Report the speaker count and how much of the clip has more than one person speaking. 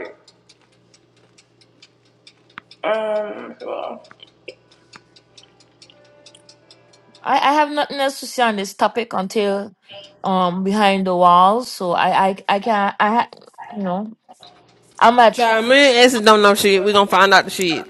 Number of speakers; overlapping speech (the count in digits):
3, about 1%